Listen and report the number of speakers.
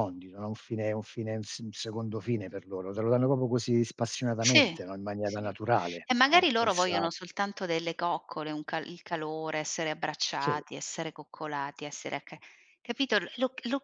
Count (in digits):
2